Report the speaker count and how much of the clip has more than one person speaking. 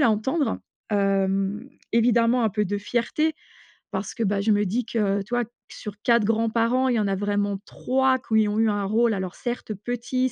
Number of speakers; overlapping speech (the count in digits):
1, no overlap